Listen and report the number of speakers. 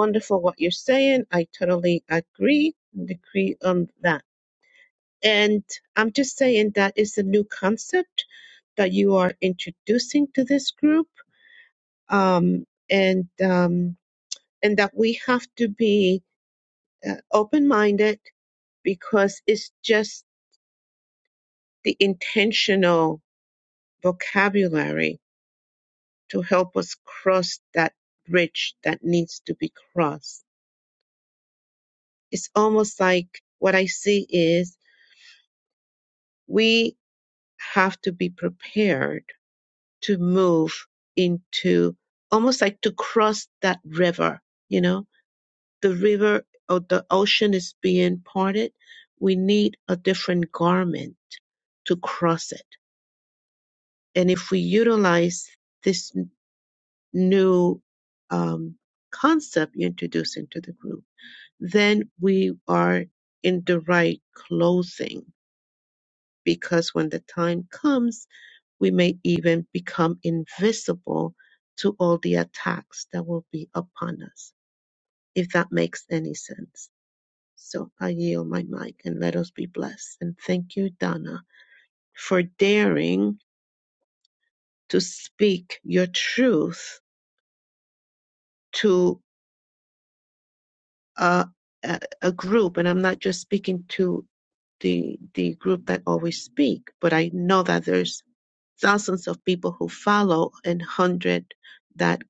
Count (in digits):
1